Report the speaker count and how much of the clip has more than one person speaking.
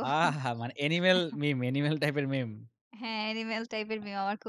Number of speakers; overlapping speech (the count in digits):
2, under 1%